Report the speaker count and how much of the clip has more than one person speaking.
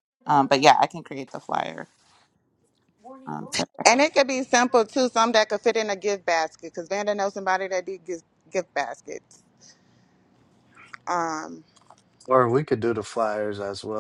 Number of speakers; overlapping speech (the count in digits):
3, no overlap